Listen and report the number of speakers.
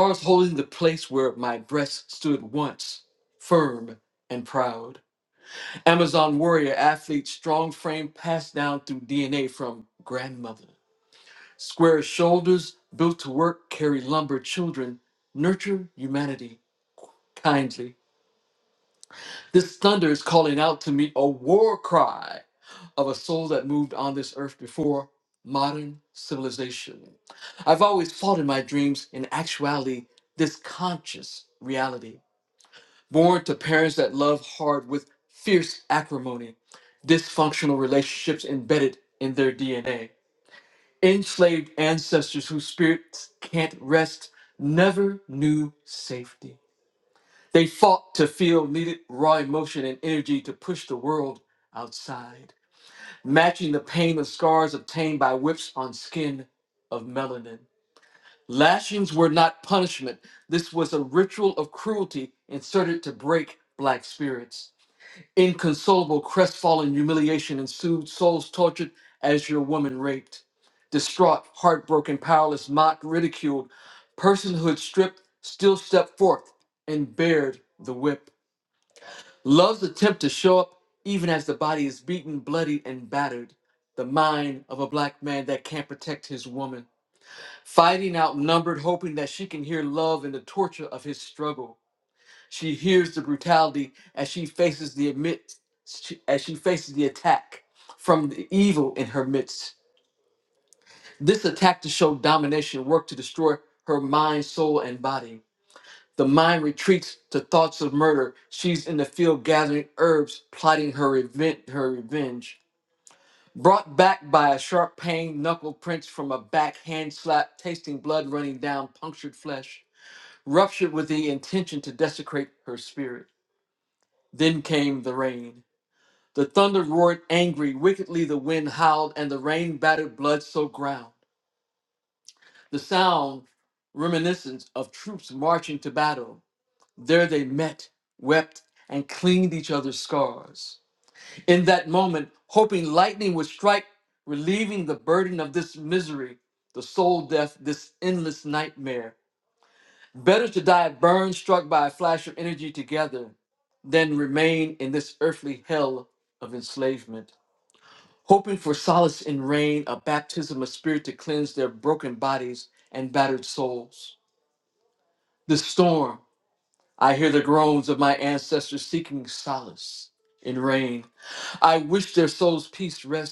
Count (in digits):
1